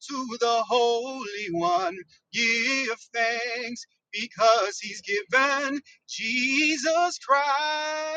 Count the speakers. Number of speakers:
1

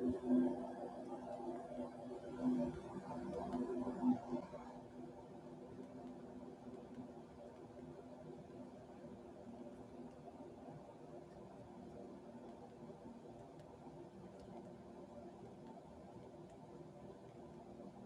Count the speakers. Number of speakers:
0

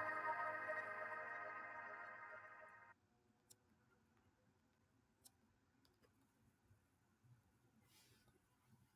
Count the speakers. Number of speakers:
0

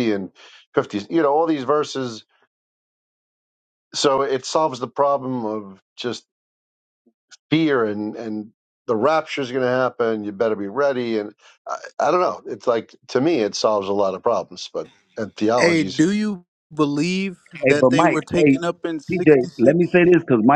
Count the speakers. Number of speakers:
3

